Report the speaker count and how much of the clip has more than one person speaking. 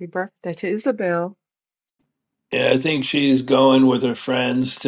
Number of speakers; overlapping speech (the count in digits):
2, no overlap